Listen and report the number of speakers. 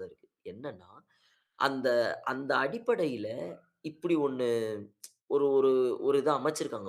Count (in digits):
1